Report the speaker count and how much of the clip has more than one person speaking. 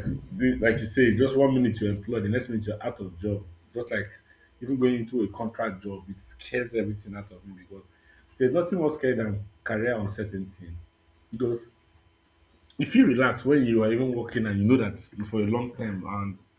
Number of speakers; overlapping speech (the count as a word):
one, no overlap